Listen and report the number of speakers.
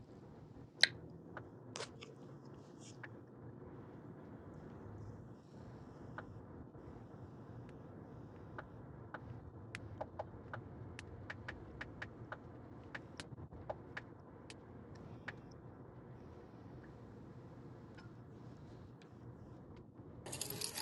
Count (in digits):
0